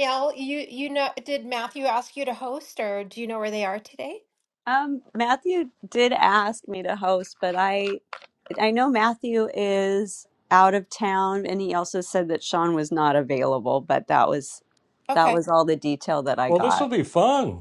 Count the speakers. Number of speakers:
3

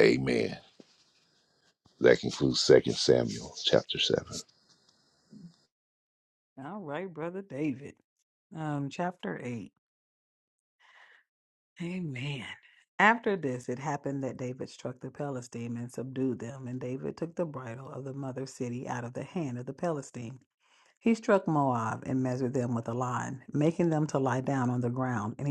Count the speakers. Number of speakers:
2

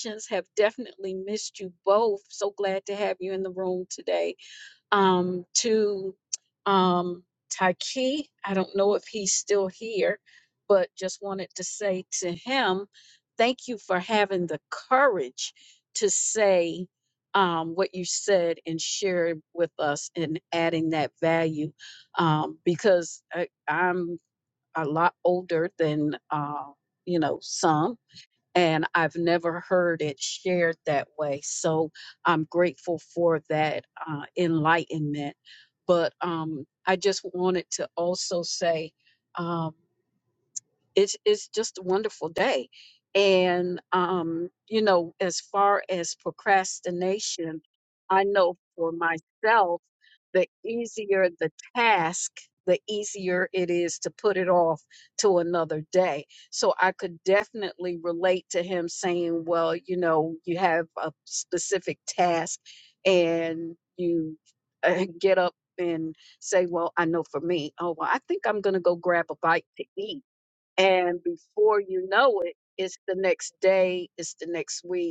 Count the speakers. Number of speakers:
1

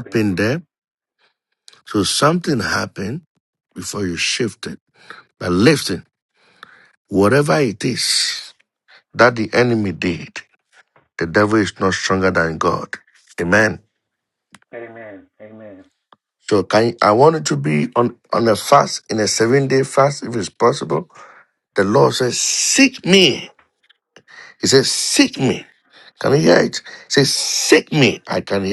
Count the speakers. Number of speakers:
2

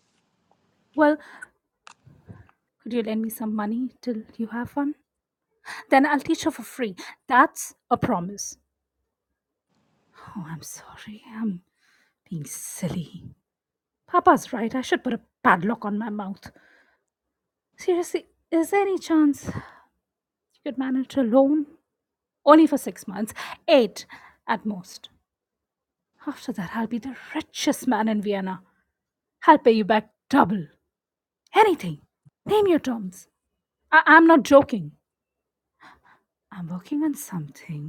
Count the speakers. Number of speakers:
1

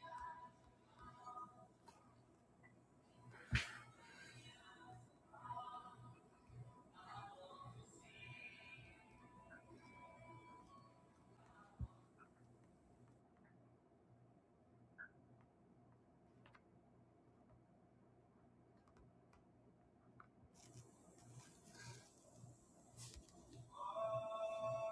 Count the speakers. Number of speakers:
0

